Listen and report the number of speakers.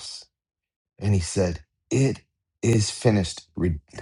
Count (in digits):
1